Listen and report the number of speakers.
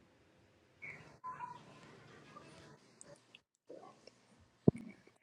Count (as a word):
zero